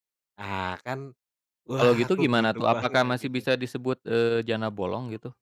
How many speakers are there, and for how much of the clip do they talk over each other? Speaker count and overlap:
2, about 31%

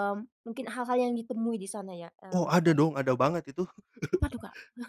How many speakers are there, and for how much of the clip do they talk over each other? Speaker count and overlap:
2, about 11%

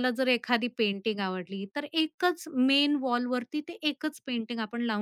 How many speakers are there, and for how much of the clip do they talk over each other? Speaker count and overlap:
1, no overlap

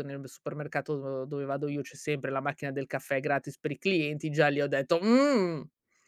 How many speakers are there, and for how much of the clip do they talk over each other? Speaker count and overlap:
1, no overlap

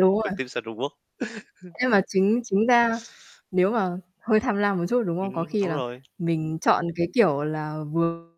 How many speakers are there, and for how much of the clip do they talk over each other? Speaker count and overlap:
2, about 12%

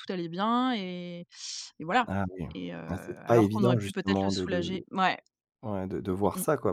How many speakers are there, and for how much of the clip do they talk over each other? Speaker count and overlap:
2, about 26%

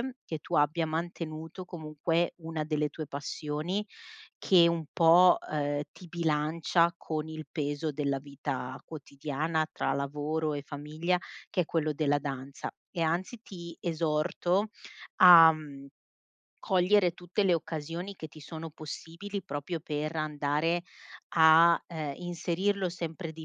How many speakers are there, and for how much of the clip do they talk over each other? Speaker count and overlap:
1, no overlap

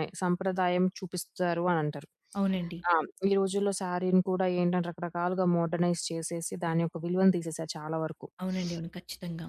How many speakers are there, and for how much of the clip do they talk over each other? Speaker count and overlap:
2, no overlap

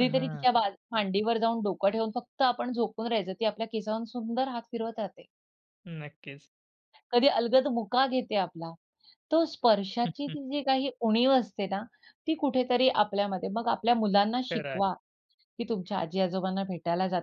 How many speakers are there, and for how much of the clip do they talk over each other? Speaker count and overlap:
2, about 5%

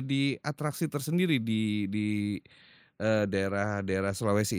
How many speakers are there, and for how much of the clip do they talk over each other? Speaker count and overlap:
1, no overlap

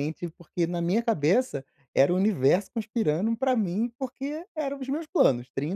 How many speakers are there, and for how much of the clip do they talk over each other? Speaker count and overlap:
1, no overlap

